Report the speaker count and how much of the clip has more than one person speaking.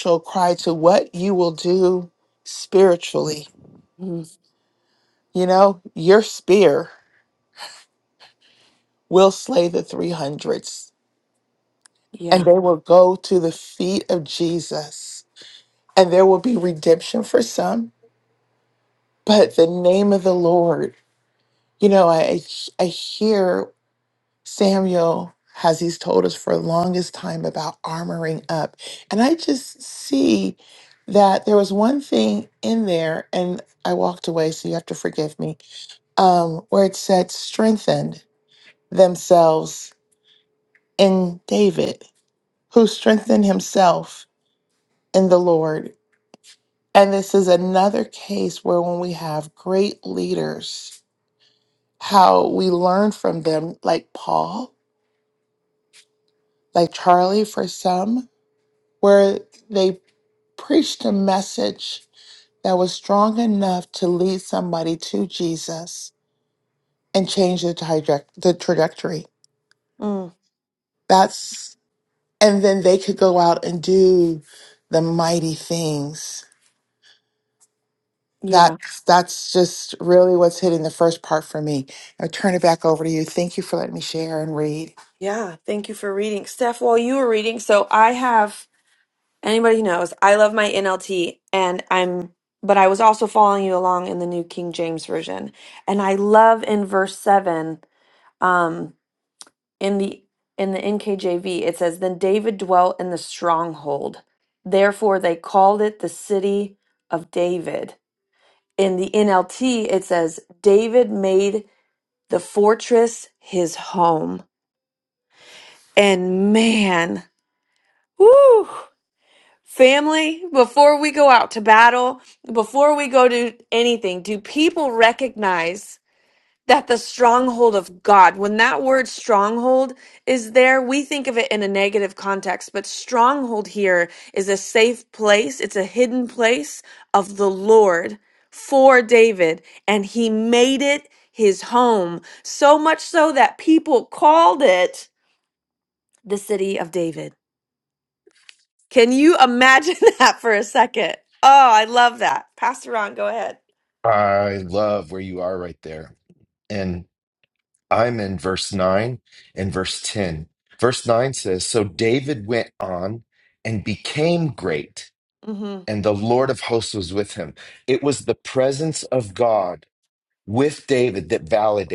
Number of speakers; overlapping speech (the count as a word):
three, under 1%